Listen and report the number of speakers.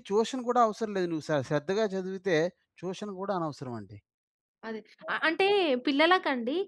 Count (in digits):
2